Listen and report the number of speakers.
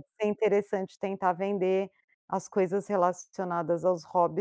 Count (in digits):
1